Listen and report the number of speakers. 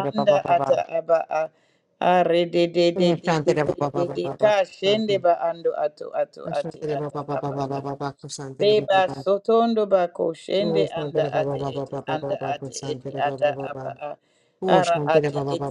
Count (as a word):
two